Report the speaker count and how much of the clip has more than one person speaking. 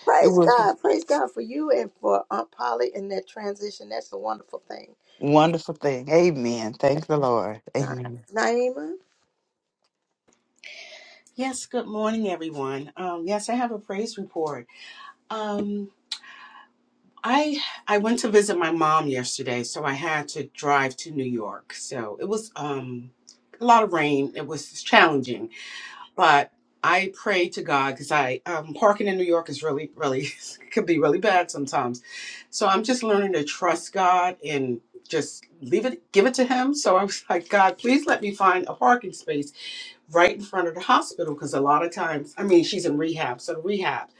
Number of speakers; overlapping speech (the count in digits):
3, about 2%